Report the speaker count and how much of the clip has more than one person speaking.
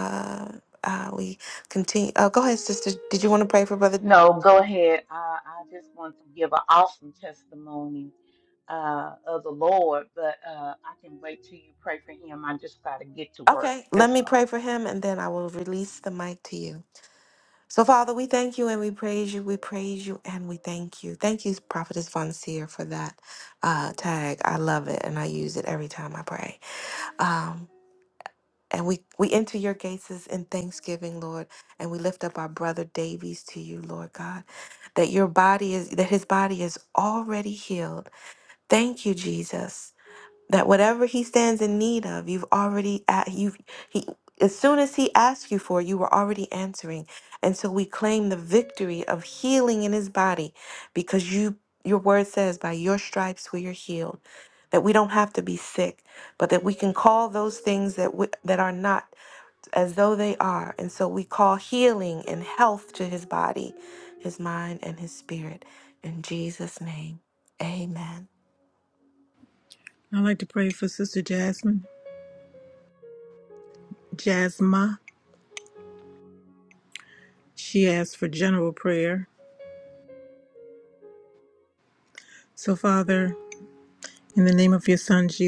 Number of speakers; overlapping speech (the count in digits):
3, about 1%